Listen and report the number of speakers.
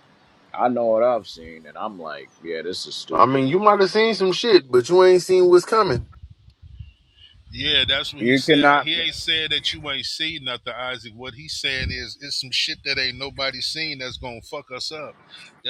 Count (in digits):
3